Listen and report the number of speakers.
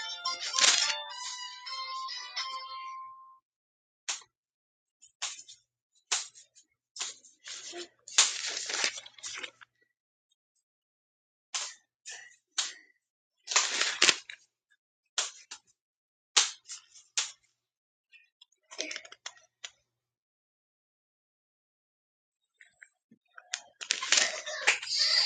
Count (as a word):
zero